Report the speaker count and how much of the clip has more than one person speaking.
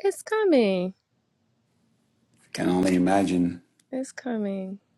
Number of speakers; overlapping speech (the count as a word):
two, no overlap